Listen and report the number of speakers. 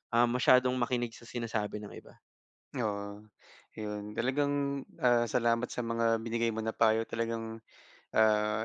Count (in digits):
2